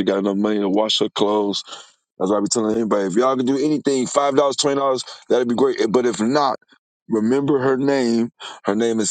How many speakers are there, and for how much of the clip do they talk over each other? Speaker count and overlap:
1, no overlap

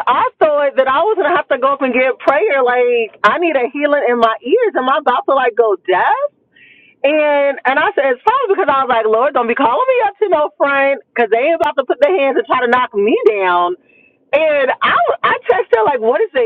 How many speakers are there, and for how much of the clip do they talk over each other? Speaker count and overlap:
1, no overlap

